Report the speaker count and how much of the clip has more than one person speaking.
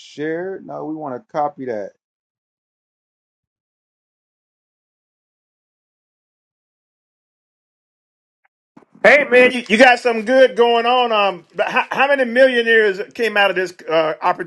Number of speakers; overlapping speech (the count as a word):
two, no overlap